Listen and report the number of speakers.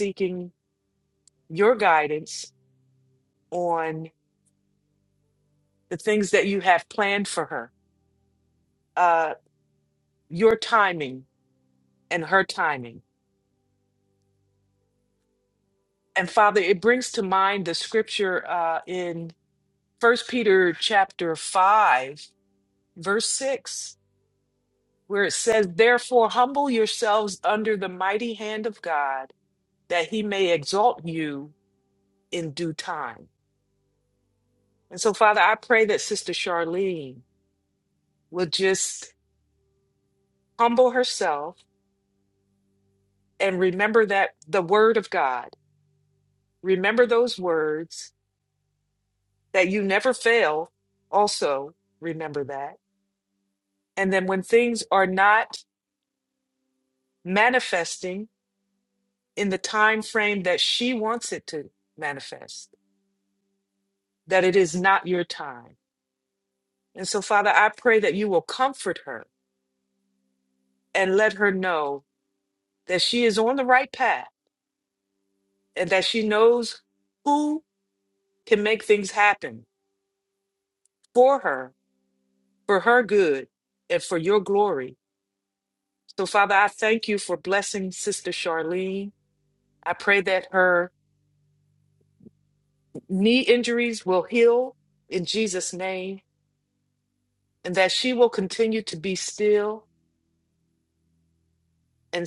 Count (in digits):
1